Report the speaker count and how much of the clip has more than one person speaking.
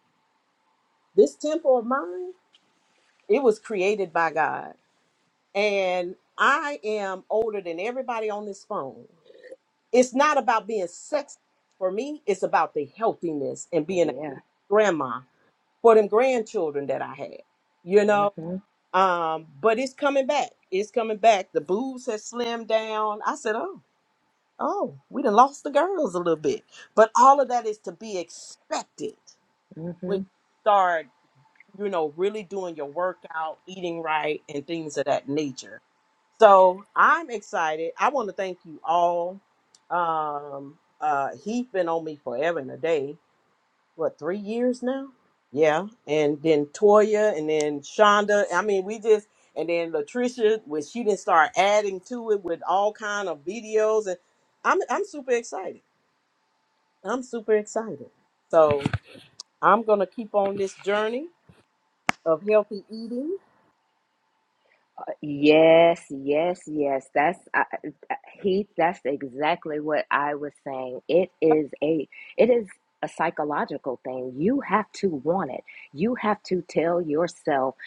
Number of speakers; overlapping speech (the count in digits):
2, about 1%